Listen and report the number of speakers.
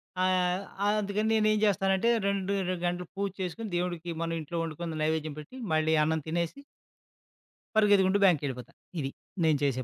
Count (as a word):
one